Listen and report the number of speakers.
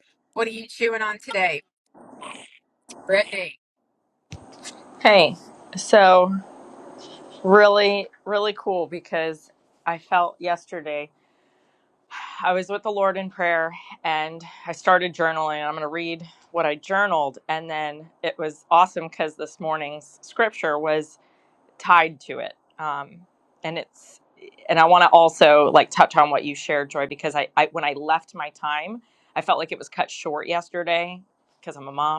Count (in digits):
2